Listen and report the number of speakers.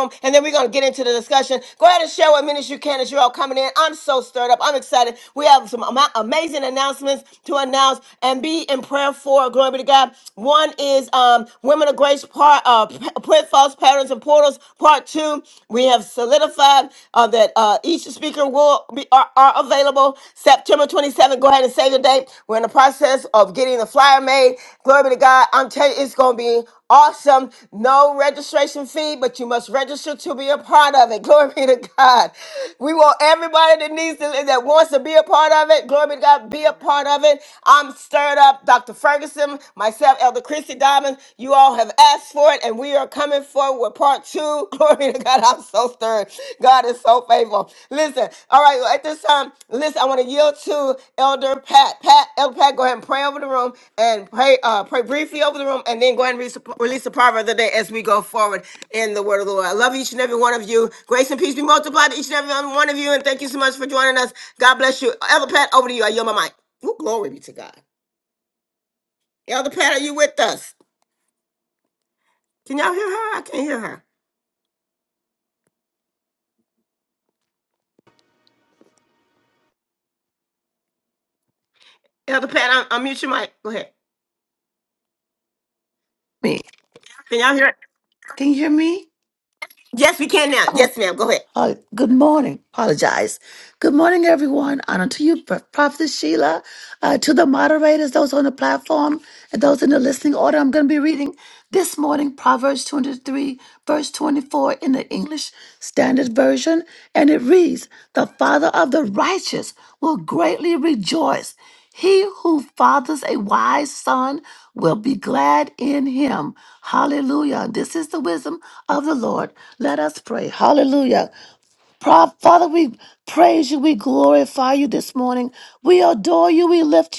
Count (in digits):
2